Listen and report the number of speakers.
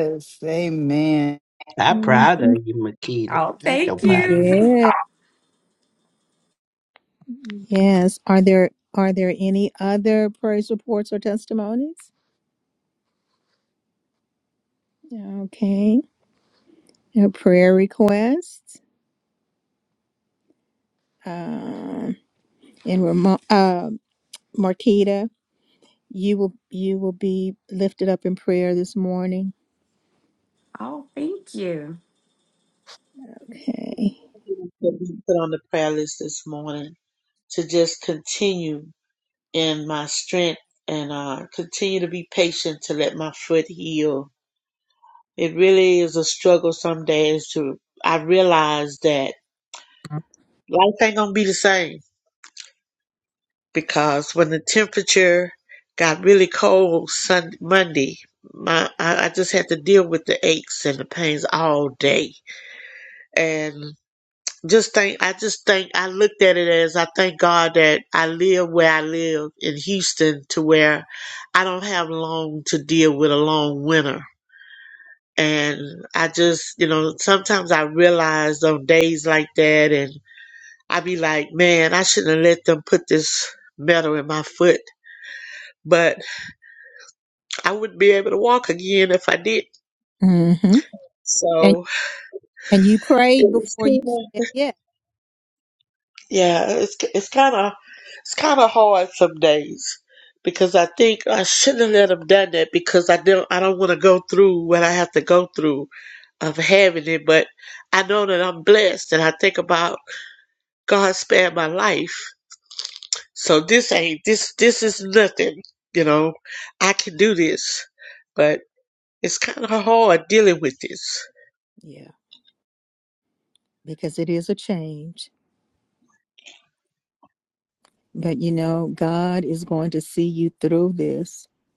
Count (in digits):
5